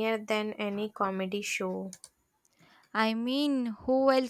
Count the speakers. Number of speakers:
2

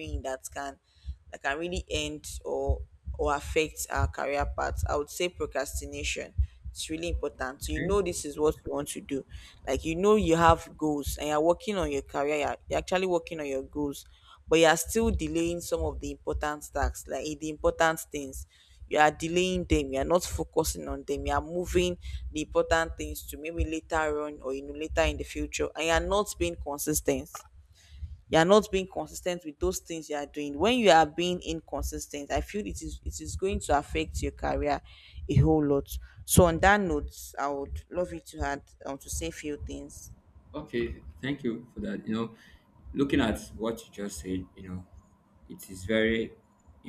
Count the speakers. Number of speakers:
2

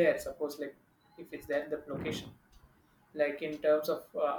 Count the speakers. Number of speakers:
1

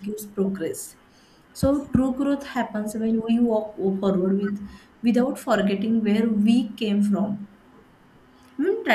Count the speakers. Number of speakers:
1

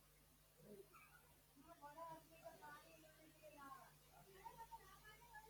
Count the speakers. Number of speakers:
0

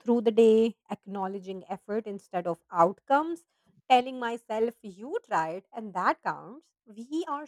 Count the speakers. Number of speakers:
1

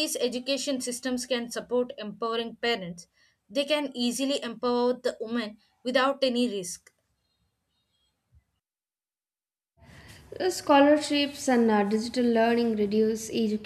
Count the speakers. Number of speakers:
2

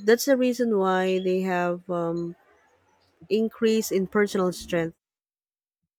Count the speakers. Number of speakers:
1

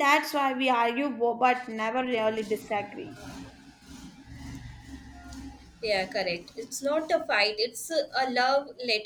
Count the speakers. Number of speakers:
2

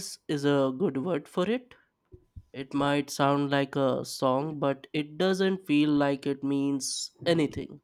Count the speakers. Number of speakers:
1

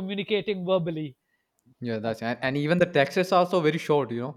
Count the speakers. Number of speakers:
2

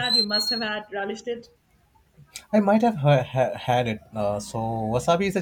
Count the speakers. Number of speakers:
2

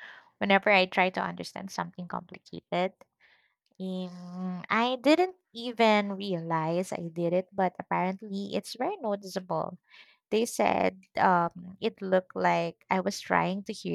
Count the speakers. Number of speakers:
1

